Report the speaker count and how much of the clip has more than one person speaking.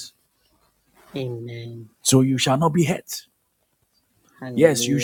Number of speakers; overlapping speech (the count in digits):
2, about 10%